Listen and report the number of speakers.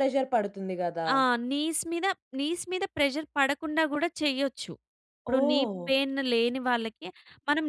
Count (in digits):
2